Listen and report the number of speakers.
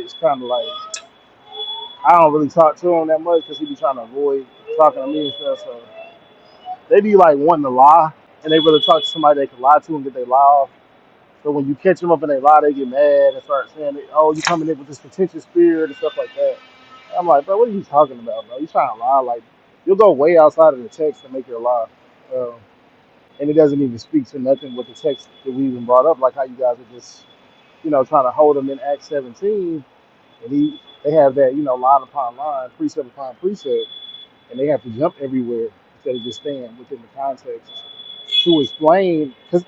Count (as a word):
one